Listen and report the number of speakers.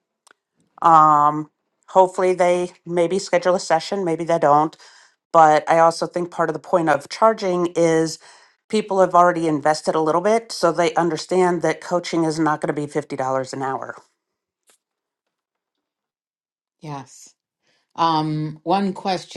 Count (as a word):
two